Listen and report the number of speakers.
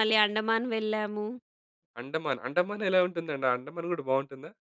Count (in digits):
2